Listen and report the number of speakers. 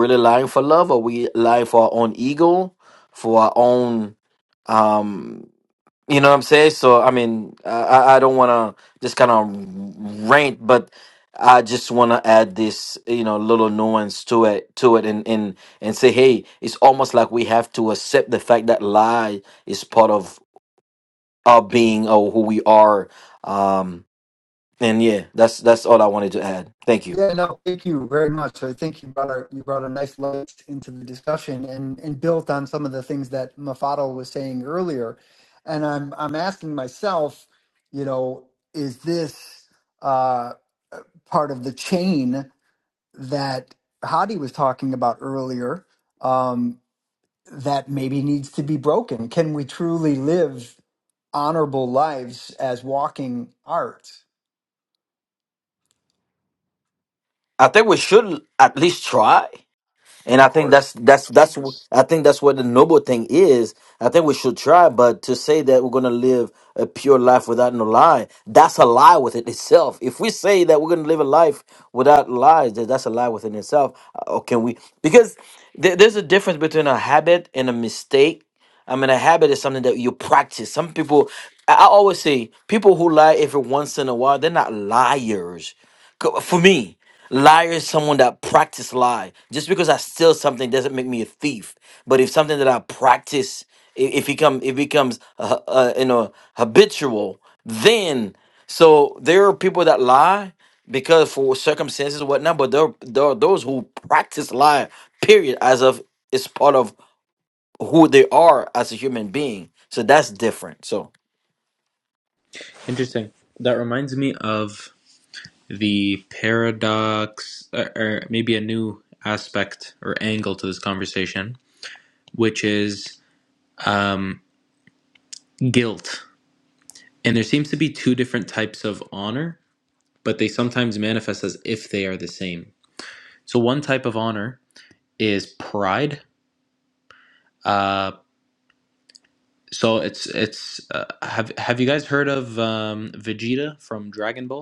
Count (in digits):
3